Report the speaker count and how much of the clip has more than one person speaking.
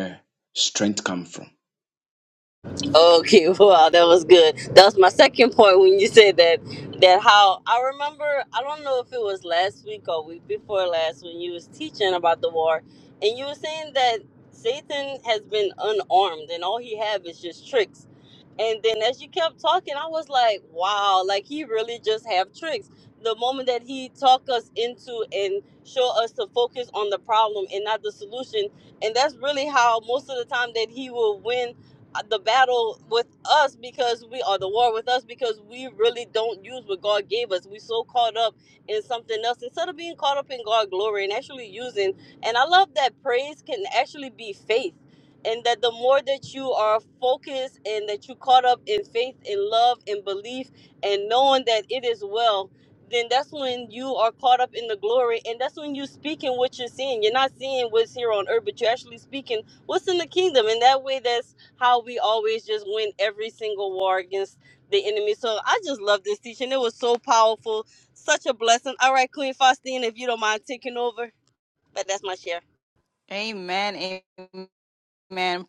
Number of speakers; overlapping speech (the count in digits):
3, no overlap